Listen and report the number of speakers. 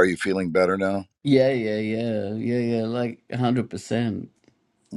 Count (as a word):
two